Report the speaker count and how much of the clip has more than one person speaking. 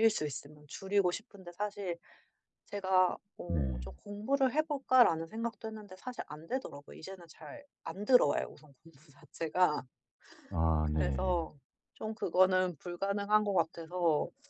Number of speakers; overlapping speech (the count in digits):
2, about 4%